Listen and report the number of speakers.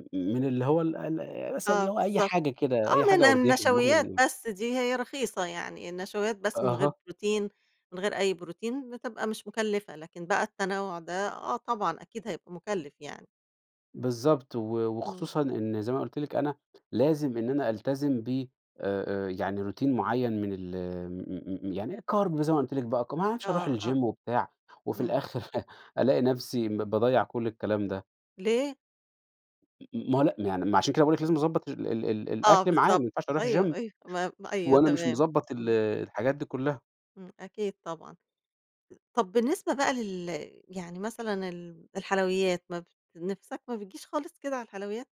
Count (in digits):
2